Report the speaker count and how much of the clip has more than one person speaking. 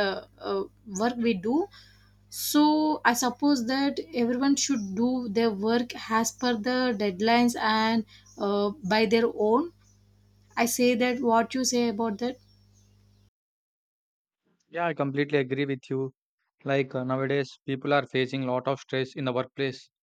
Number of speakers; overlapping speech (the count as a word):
two, no overlap